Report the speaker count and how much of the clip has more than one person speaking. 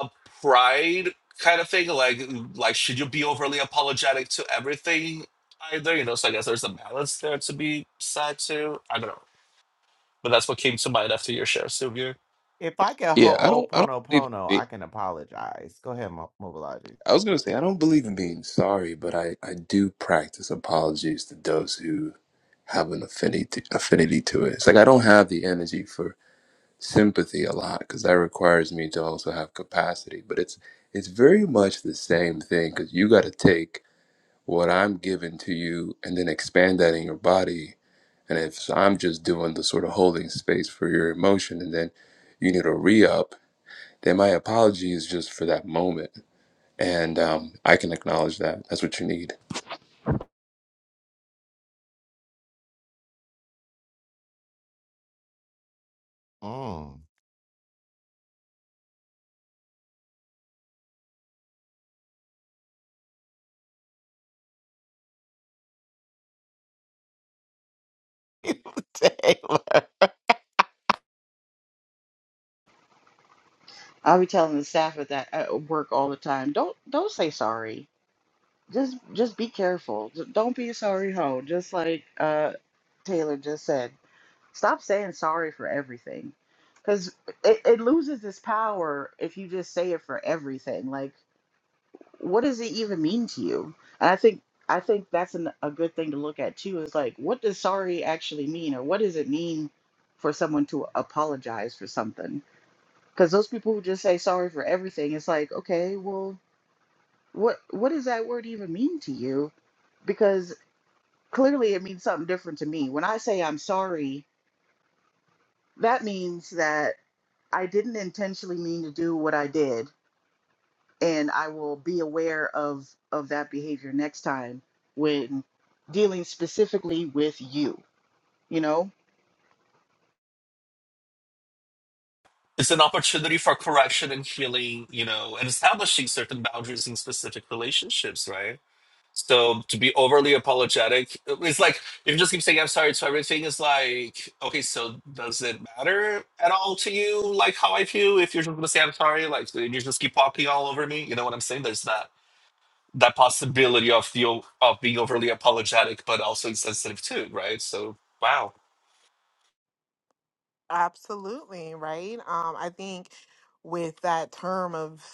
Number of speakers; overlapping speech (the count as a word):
five, about 1%